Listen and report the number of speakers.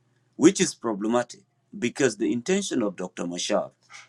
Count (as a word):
one